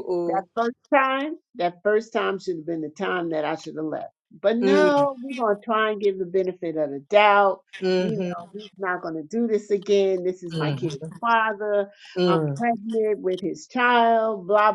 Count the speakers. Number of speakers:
two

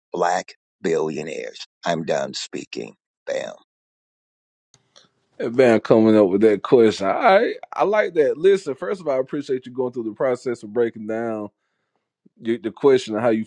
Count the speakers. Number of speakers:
two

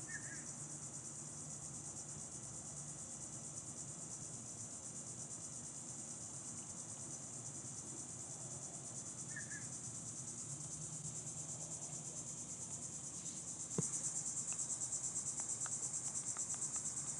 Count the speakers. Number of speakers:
zero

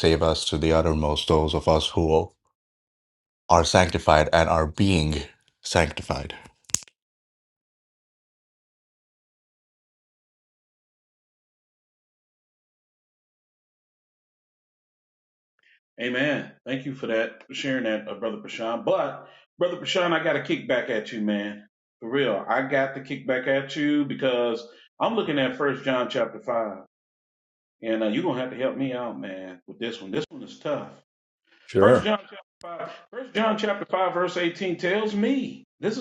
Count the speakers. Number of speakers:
two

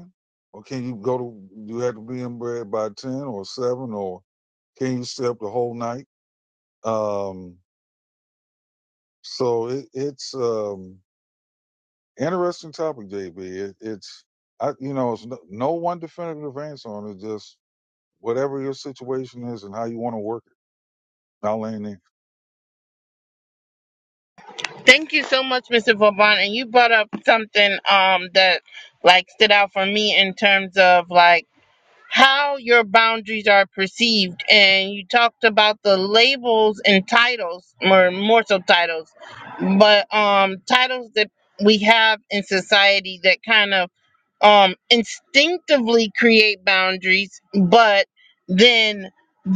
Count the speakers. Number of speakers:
two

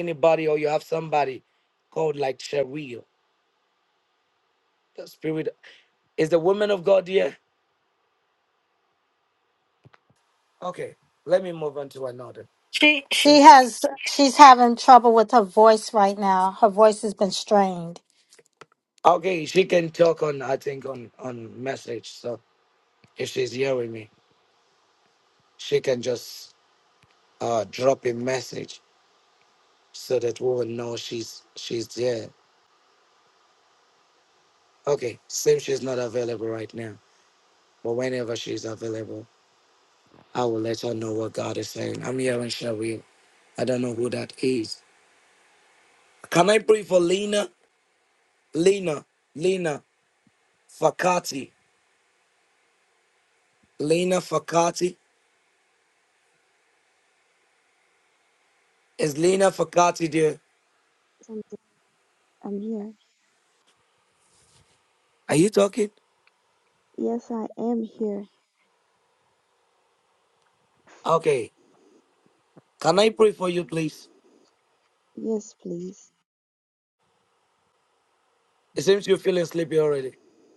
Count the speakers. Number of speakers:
three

